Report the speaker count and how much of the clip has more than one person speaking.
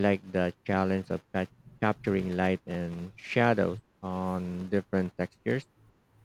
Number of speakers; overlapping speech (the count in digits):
1, no overlap